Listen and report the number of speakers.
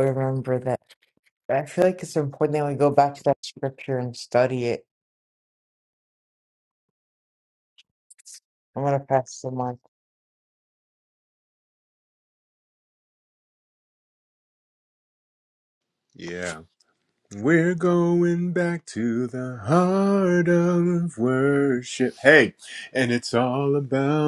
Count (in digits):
2